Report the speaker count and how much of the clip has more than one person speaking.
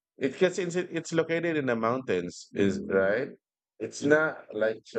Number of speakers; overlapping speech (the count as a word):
one, no overlap